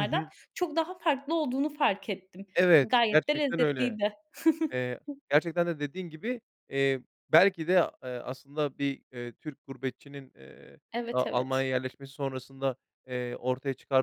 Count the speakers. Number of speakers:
2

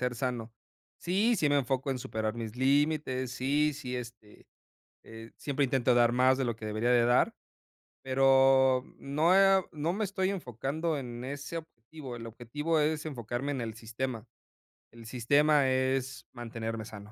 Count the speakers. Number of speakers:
1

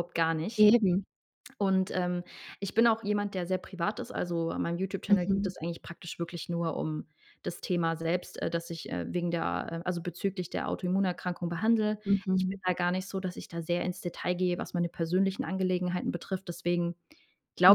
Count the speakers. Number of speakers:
2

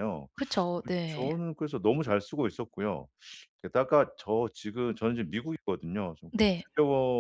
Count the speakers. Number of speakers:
2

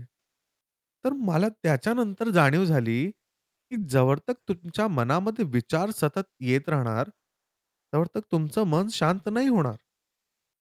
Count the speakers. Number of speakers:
1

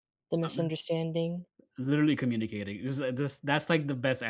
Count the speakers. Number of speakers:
2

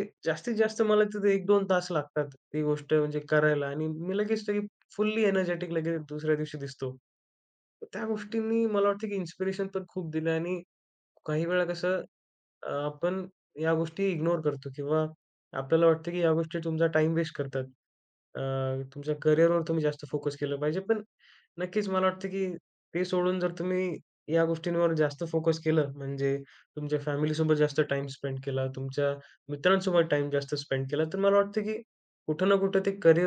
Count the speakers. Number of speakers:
1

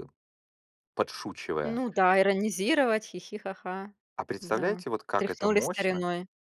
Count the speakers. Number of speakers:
2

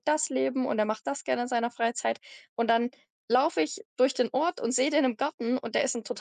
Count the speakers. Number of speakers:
1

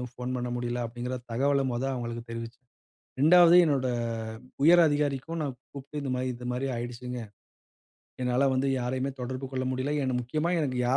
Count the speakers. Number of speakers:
1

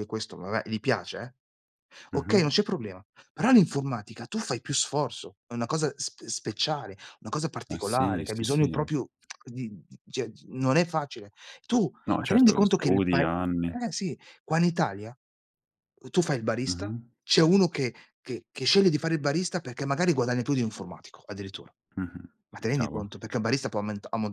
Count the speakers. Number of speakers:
2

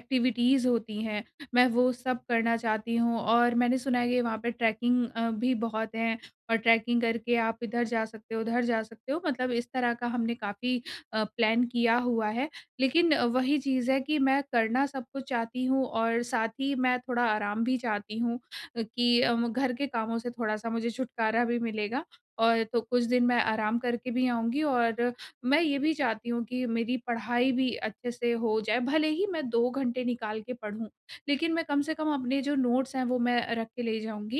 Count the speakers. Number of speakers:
1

